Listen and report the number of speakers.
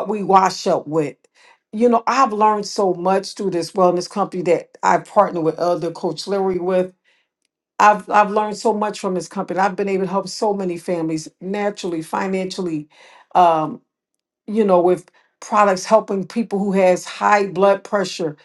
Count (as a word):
one